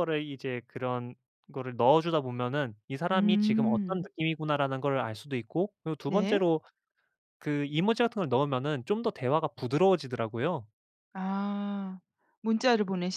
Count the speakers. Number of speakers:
2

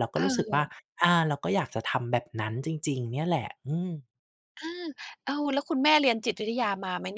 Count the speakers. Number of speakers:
2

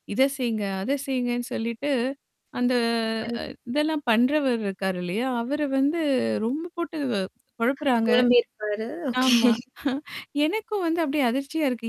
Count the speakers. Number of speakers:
2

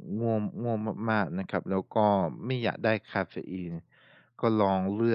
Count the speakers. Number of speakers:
1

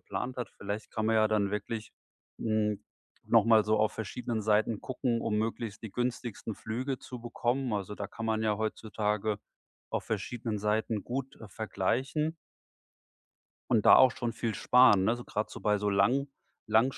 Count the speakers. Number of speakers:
1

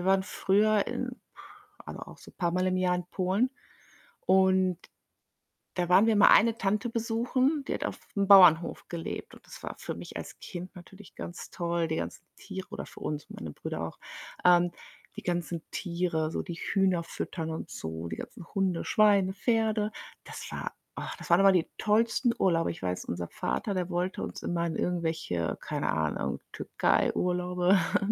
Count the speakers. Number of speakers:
1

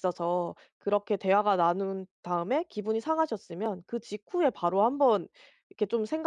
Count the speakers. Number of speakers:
1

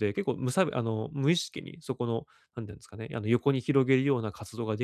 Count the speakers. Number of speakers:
1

